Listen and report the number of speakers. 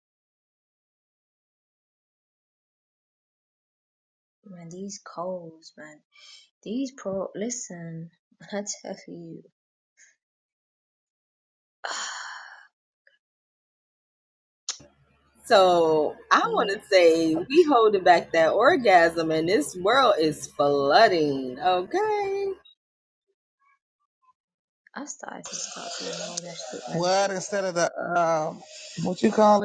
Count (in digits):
3